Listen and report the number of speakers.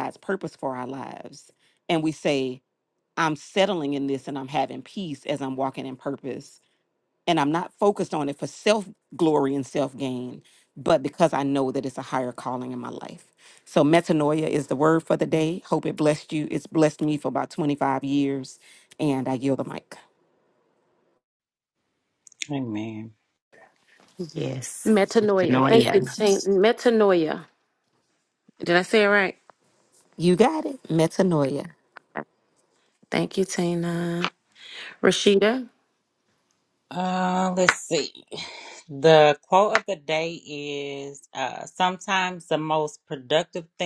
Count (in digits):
4